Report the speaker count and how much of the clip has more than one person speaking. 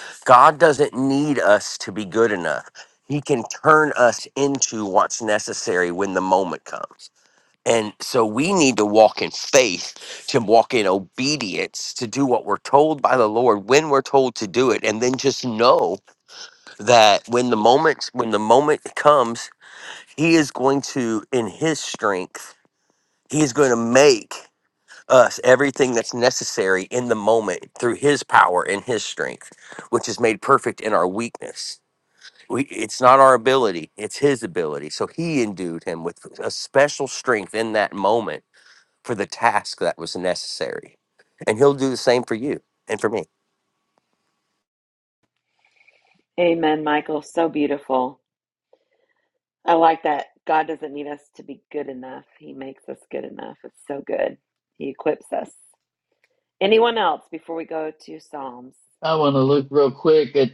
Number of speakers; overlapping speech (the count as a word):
three, no overlap